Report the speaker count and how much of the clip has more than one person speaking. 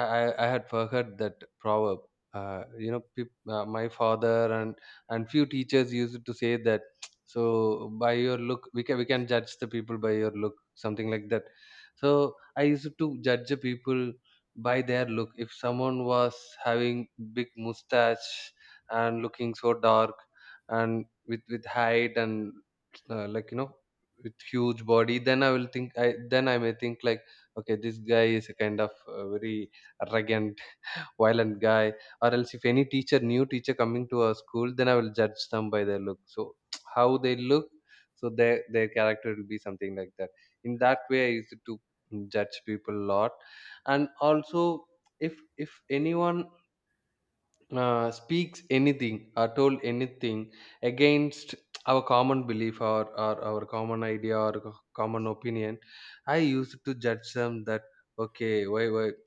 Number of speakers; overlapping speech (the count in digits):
1, no overlap